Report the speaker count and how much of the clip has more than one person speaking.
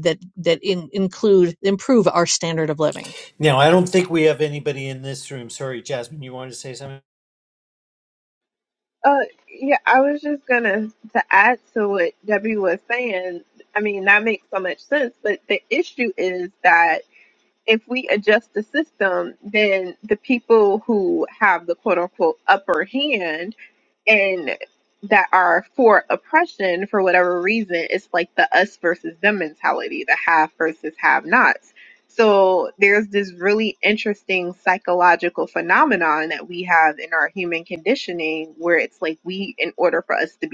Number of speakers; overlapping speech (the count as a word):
three, no overlap